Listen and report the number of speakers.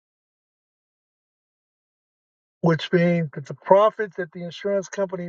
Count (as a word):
one